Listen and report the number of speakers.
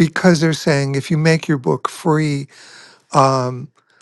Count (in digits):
1